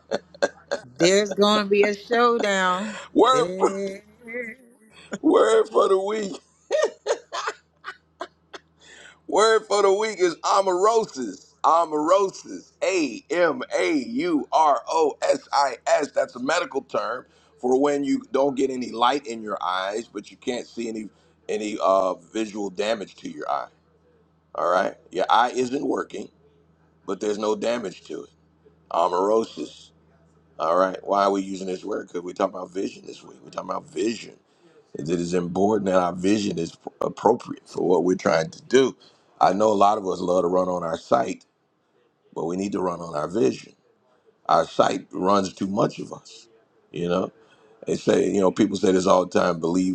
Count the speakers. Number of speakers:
two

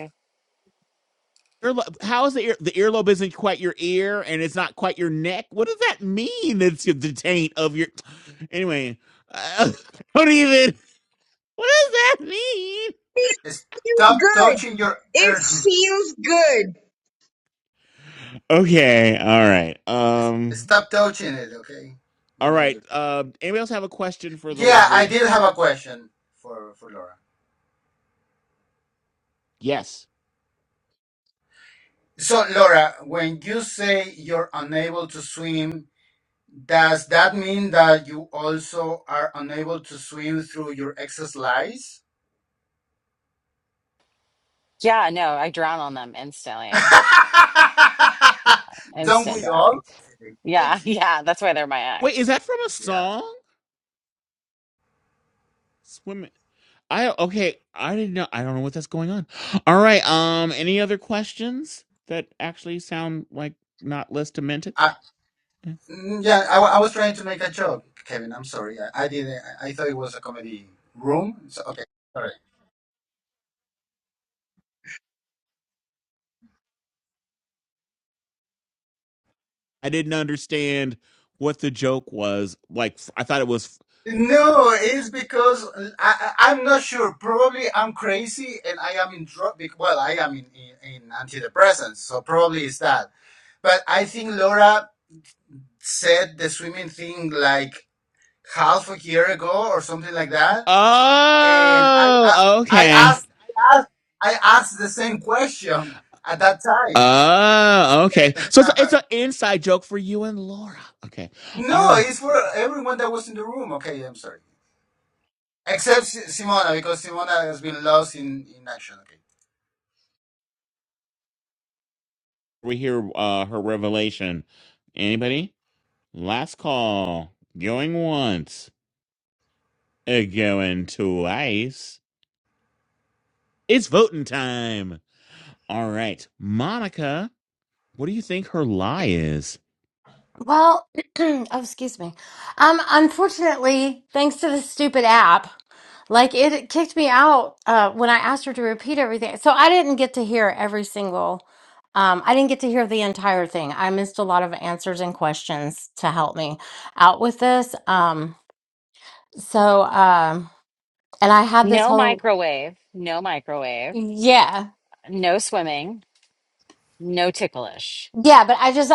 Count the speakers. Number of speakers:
five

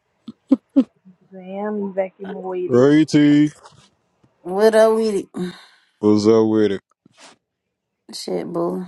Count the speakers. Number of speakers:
three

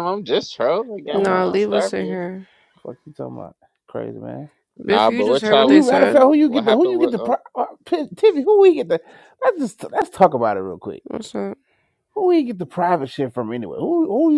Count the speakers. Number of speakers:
three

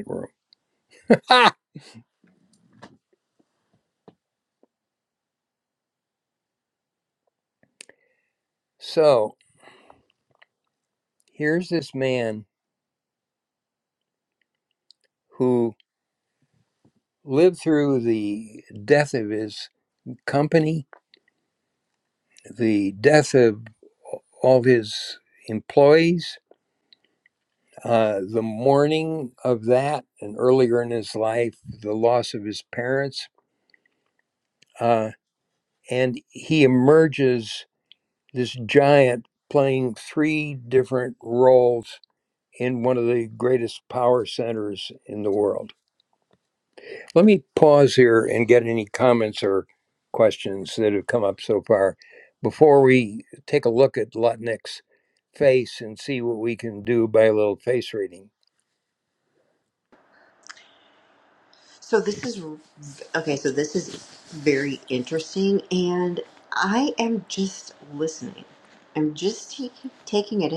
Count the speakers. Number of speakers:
two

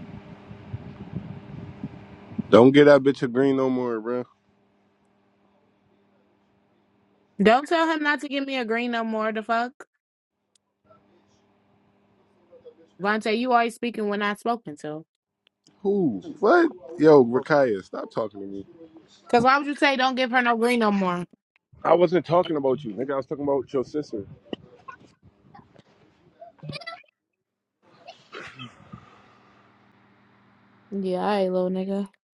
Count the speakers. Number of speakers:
two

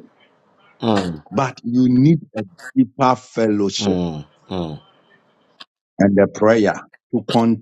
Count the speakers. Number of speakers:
two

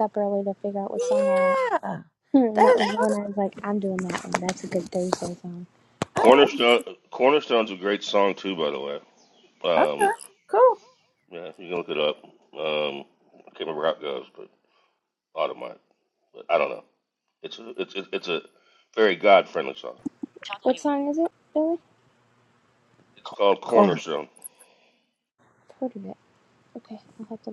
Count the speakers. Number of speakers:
three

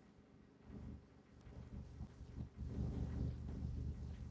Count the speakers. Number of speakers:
zero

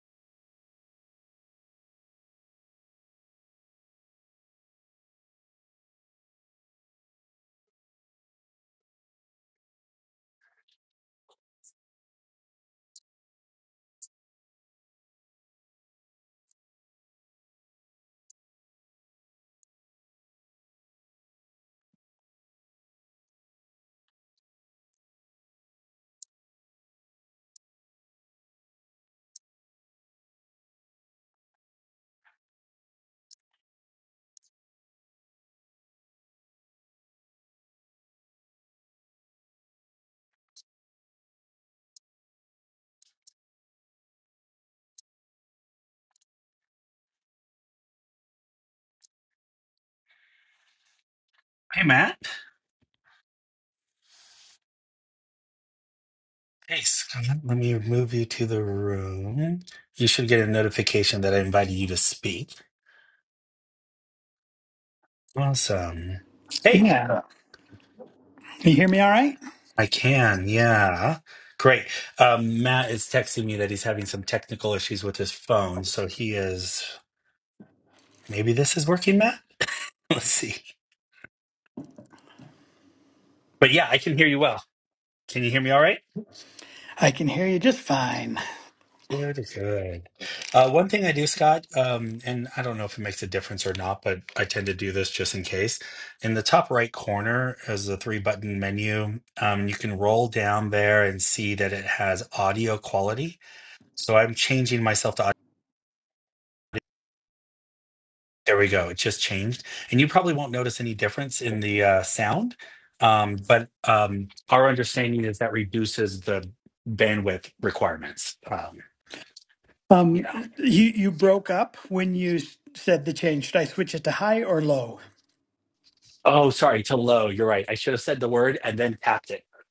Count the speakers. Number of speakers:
two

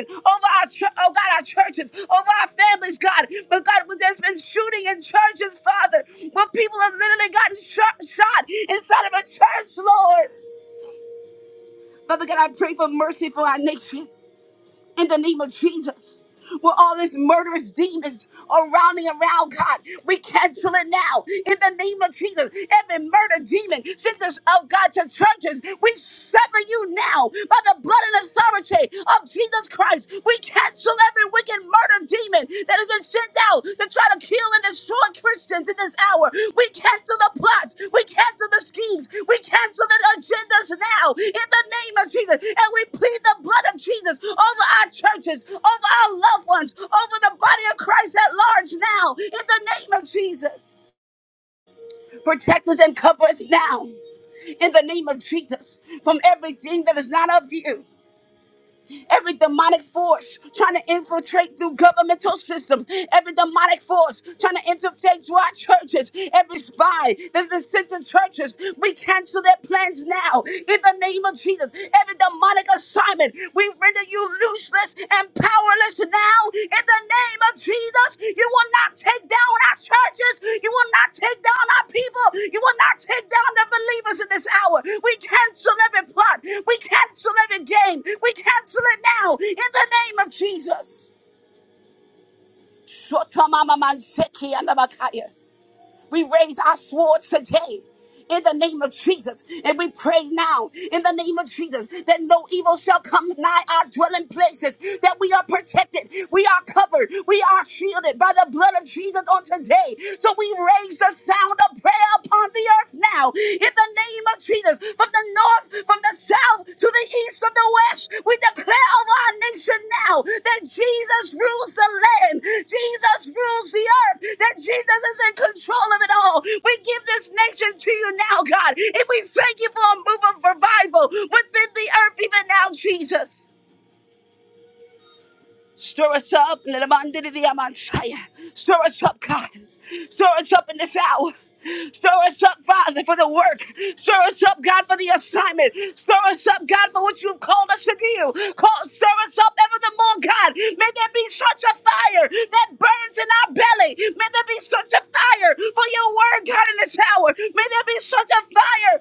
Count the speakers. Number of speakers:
one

